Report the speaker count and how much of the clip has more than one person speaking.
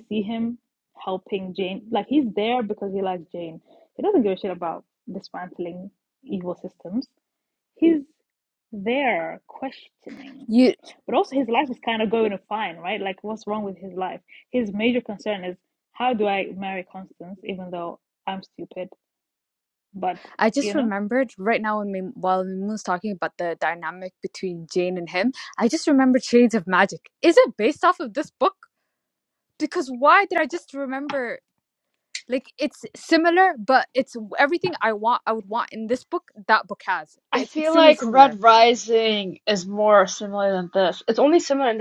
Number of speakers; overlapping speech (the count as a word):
three, about 3%